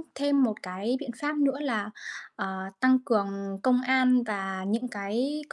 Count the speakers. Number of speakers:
one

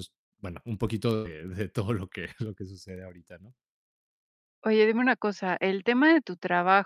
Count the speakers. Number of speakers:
two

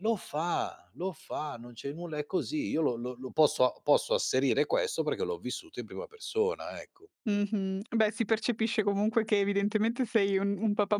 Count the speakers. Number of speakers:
two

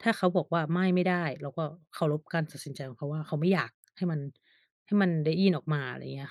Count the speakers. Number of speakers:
one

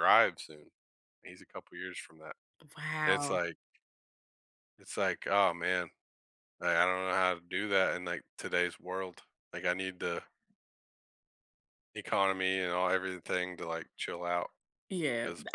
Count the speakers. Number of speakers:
two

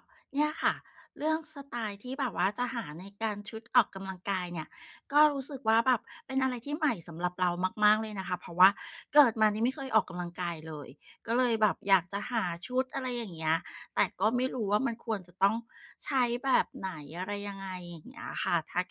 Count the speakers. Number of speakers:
one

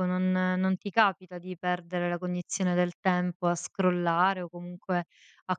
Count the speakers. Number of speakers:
one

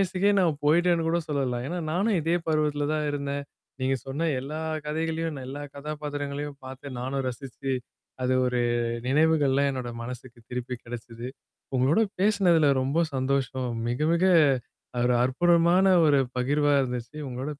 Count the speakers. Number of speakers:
one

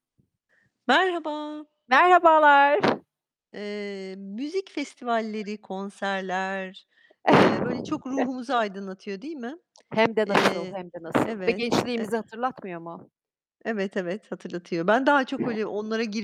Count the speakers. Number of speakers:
two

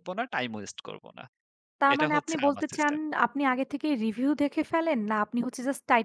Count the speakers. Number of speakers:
two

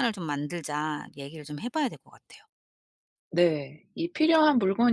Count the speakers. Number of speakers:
two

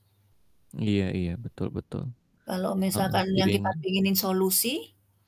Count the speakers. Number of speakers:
two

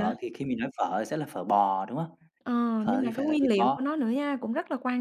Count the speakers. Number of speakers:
two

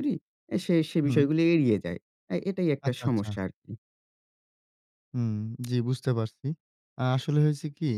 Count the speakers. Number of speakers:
two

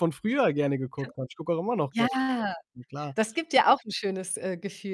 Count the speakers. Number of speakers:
two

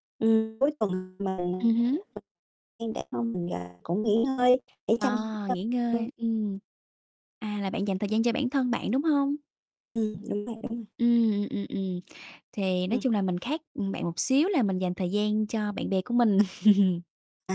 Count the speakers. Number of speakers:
two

